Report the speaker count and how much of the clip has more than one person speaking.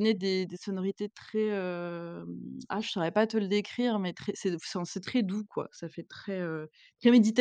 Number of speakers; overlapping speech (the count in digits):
1, no overlap